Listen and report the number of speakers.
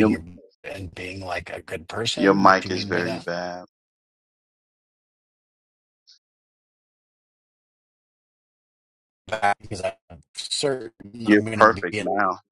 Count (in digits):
2